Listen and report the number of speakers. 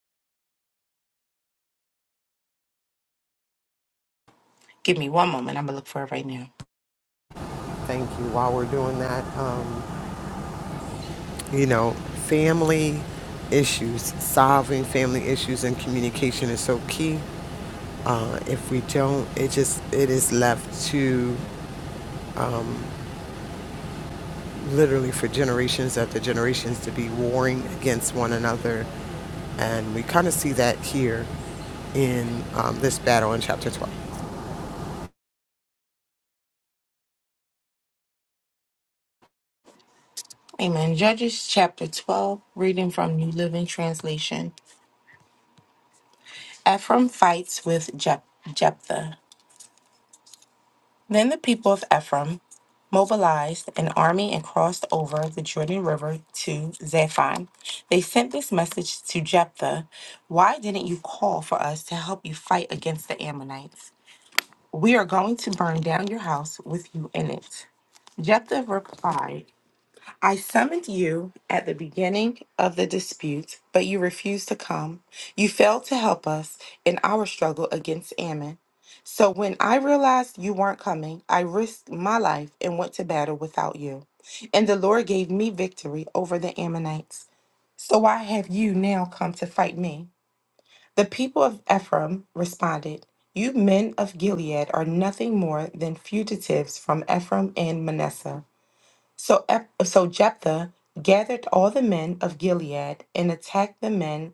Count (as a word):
two